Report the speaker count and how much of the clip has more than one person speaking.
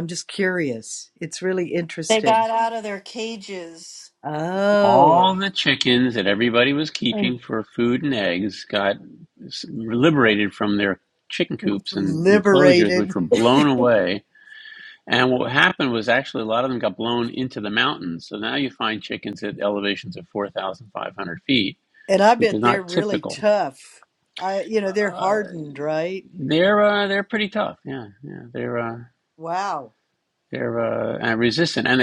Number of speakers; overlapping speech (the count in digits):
3, about 11%